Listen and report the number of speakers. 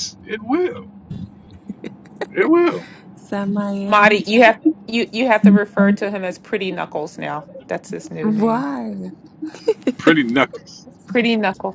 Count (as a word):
three